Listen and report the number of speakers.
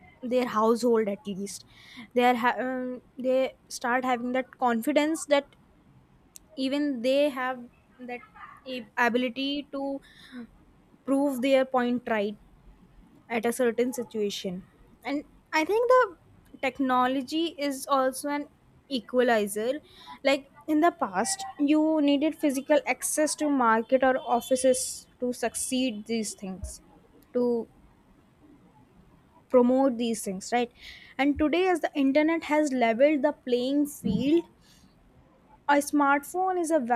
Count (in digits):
1